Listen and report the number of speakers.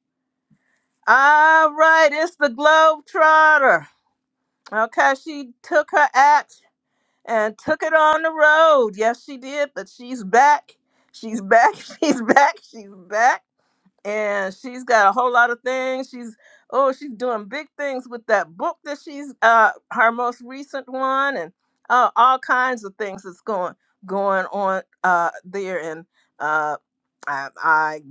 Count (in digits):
1